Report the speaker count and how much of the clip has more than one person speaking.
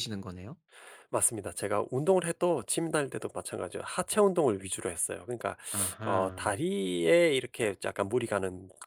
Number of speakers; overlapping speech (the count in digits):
2, about 5%